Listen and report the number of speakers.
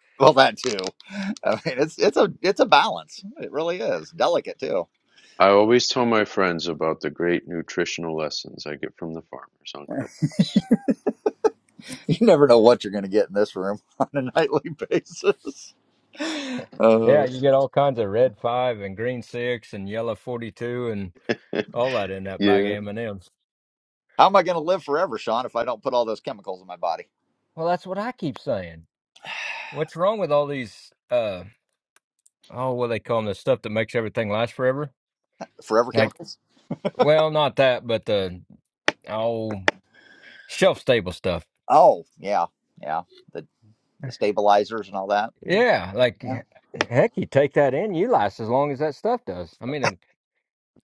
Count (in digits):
3